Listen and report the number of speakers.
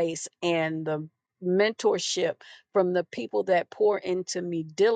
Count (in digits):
1